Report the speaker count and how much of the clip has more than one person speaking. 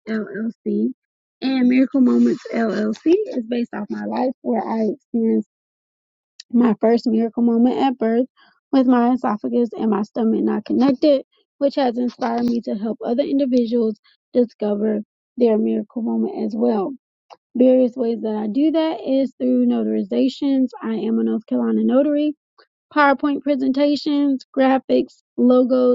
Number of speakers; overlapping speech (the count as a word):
one, no overlap